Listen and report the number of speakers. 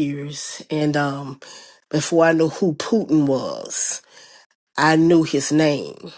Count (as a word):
one